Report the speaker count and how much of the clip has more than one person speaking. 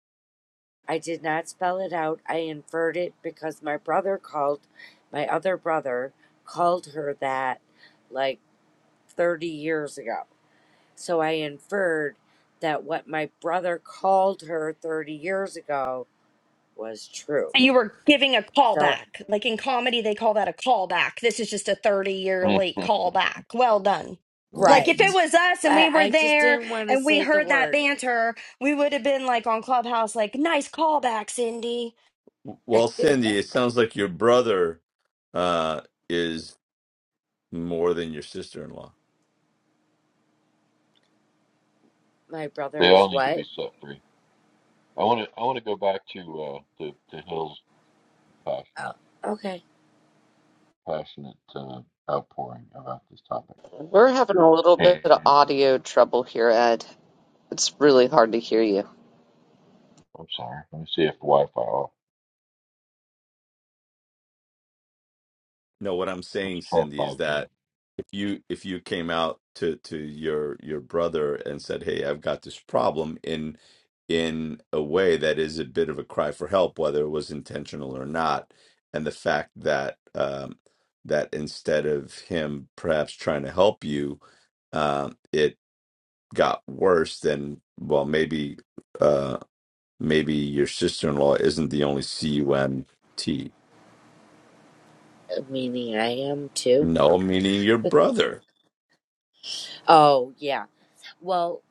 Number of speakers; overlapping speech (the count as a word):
five, about 5%